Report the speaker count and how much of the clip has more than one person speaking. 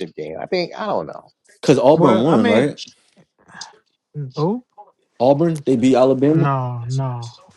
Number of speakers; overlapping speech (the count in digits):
3, about 12%